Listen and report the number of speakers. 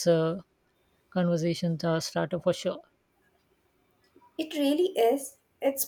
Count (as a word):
two